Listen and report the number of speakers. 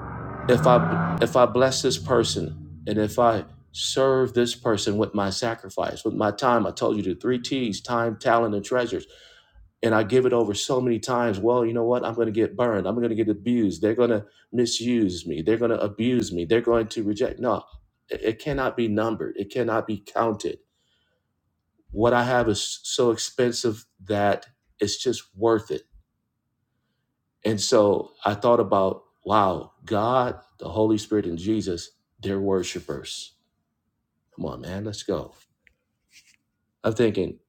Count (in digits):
1